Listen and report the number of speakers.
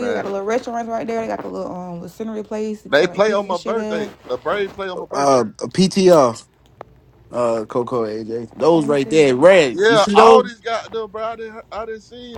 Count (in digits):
3